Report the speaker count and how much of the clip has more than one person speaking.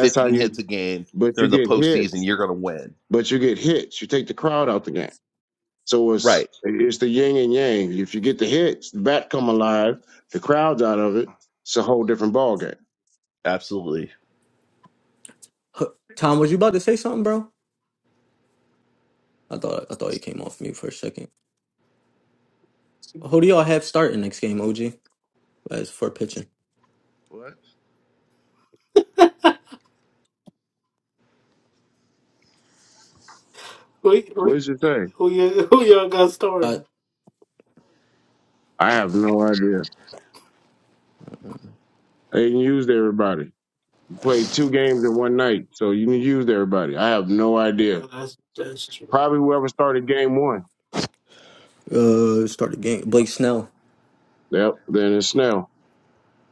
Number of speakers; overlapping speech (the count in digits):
4, about 3%